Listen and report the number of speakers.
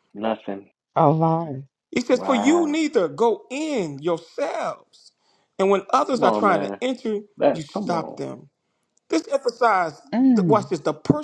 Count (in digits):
3